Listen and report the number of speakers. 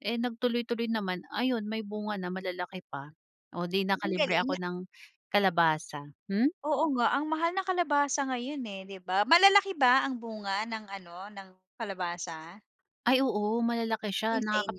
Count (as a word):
two